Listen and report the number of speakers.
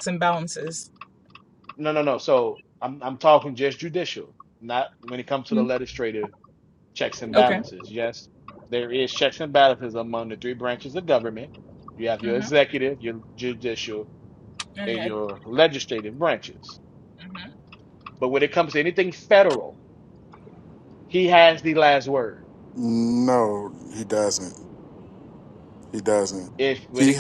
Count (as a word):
three